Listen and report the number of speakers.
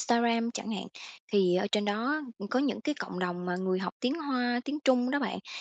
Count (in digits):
1